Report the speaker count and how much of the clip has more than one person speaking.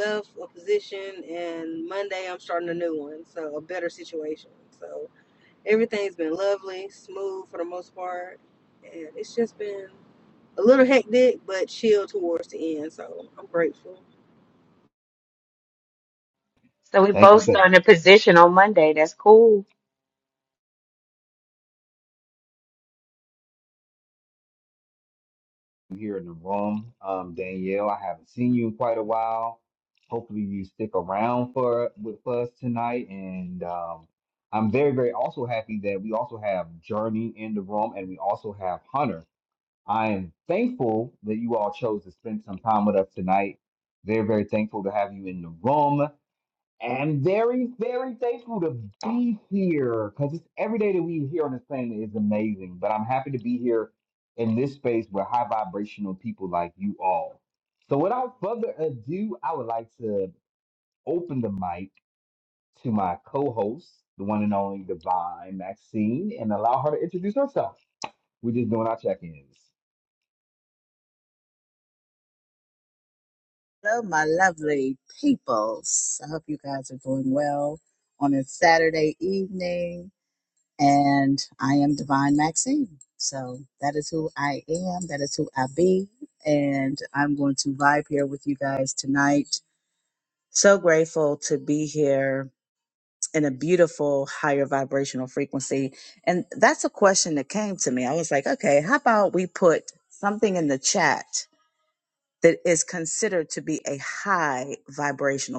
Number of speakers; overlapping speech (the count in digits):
4, under 1%